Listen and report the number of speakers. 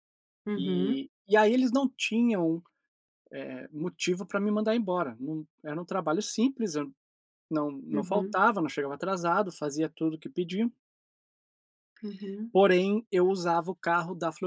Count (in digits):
2